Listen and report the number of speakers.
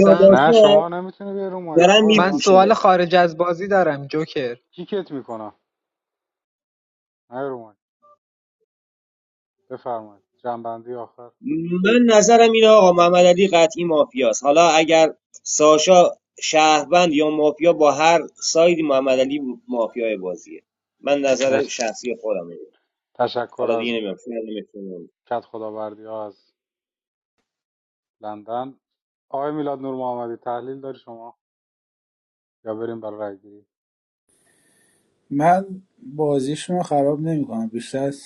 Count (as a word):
four